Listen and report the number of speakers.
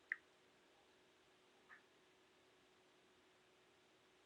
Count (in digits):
0